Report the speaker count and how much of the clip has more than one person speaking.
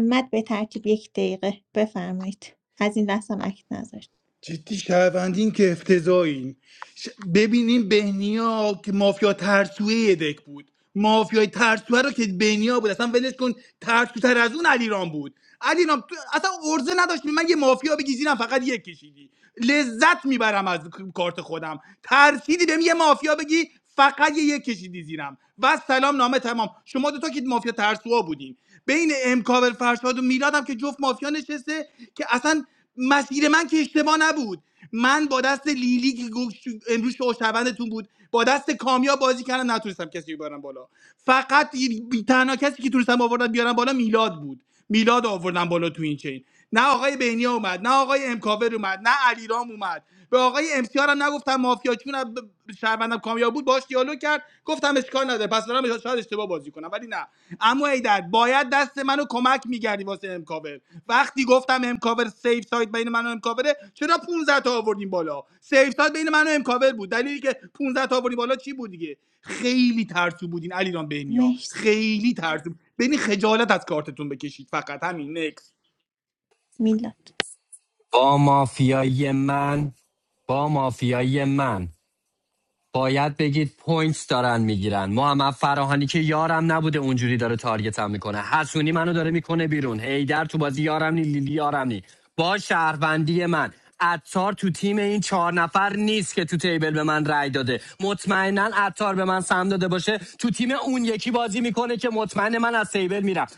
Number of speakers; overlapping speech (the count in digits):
3, under 1%